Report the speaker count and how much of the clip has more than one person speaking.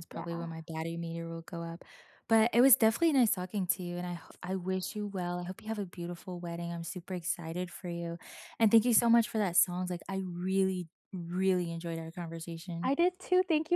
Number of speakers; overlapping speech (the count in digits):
2, about 3%